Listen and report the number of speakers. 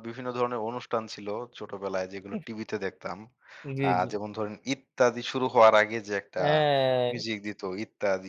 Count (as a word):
two